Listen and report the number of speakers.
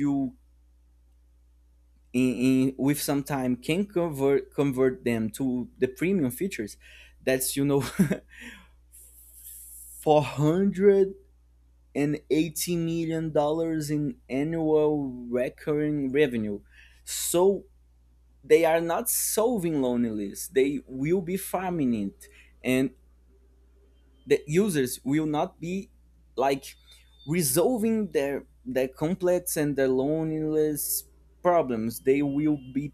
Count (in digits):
1